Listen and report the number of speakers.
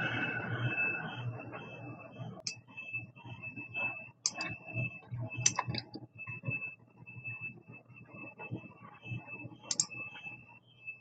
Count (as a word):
zero